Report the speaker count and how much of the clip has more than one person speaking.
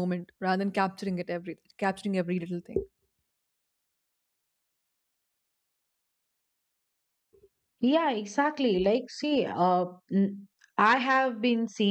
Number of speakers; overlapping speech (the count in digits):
2, no overlap